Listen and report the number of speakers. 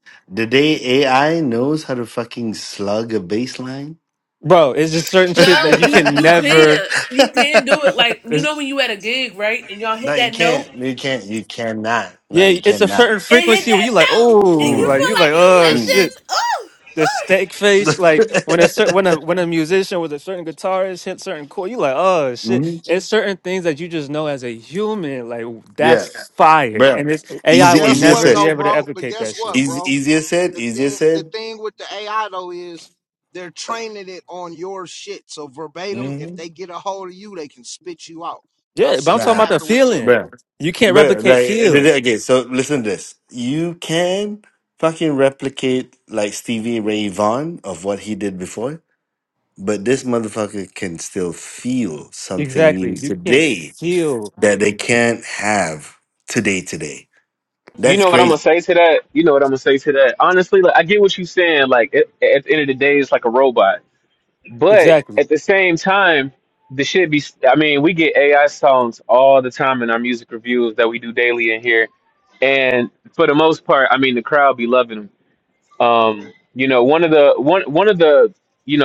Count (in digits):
5